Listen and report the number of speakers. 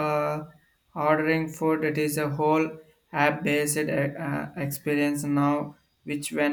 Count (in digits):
1